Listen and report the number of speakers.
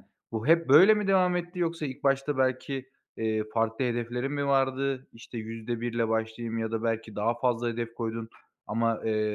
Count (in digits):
1